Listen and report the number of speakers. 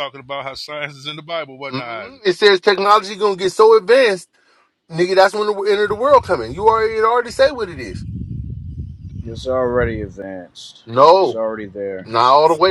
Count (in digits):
3